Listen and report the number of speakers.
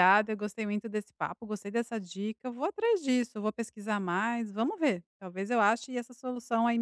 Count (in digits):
1